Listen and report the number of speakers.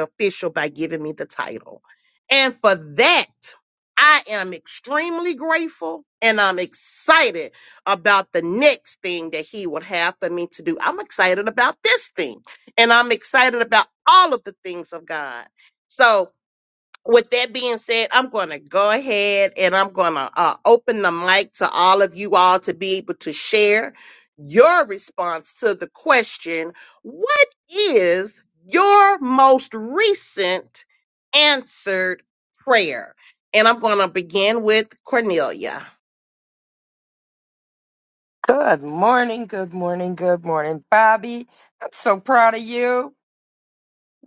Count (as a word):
two